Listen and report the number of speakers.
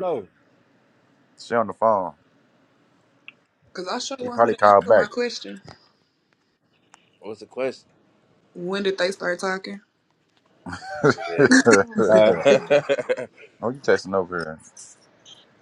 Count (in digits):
3